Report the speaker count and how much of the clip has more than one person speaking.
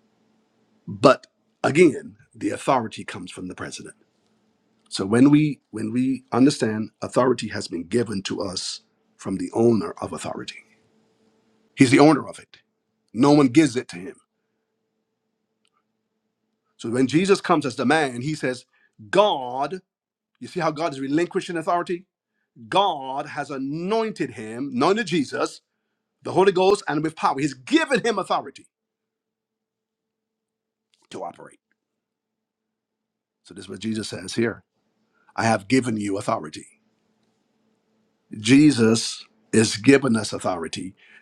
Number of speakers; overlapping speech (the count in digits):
1, no overlap